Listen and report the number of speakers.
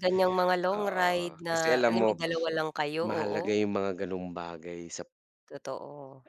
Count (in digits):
2